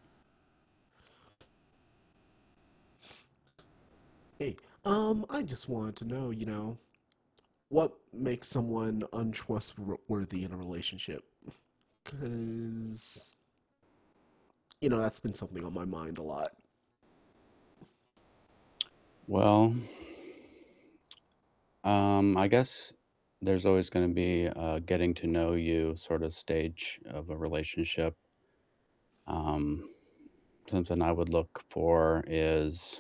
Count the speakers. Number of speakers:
2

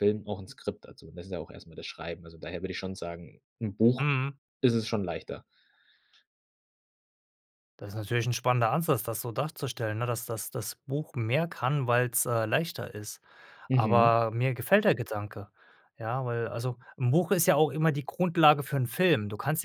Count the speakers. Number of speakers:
2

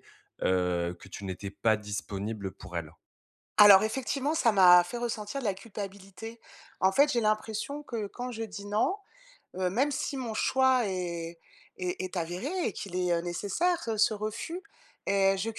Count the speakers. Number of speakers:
2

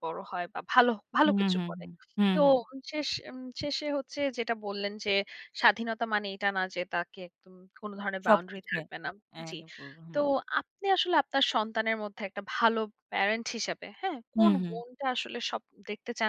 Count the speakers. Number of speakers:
2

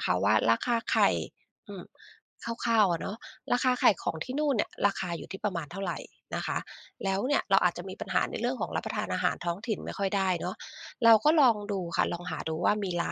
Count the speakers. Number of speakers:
1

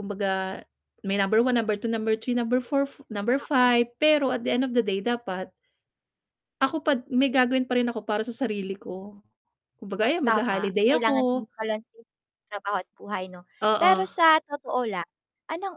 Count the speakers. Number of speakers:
2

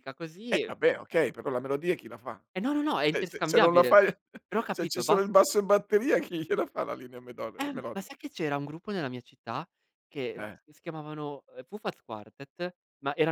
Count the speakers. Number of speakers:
2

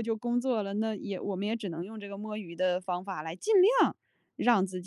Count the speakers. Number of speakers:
1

